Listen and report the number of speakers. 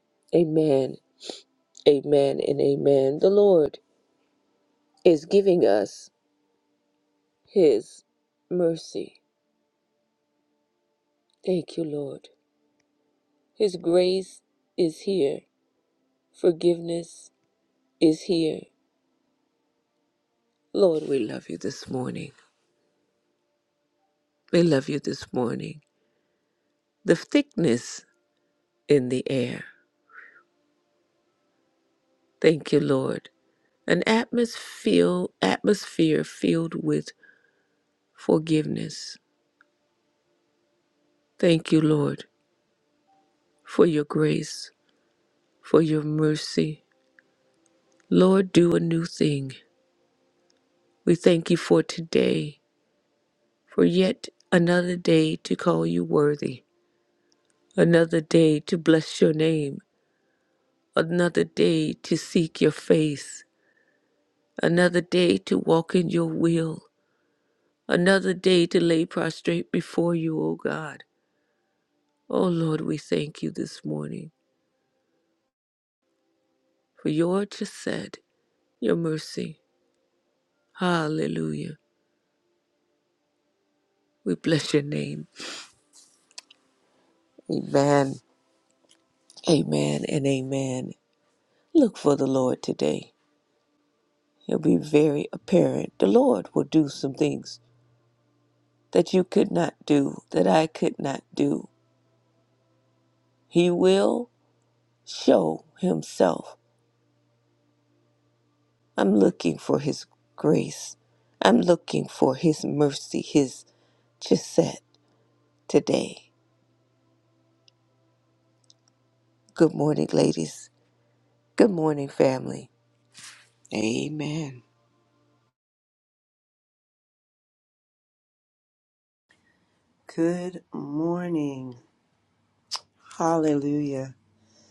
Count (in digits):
2